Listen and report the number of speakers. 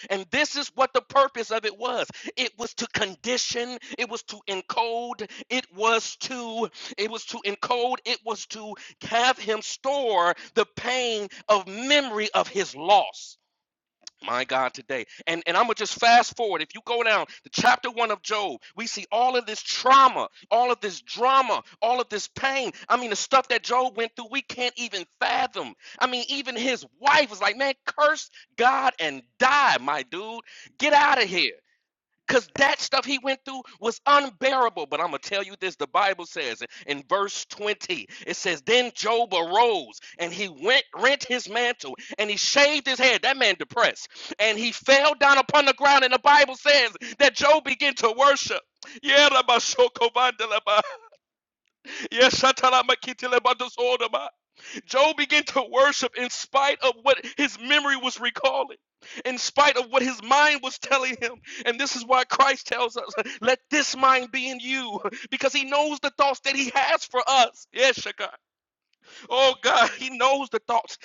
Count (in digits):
1